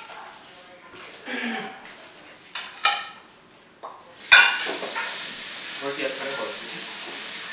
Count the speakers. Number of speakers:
1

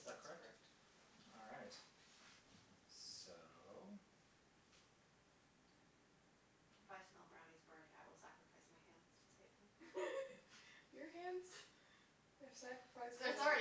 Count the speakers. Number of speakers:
3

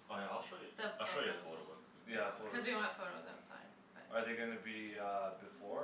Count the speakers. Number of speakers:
3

